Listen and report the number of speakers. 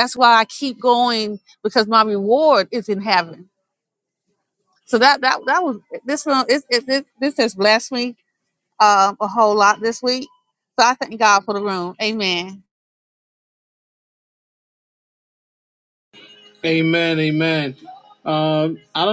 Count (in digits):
2